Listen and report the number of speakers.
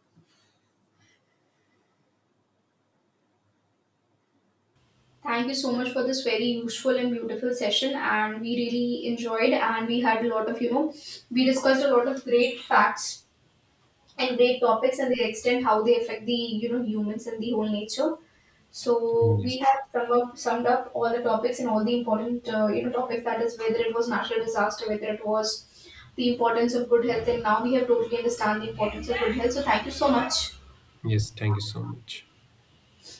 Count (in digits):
2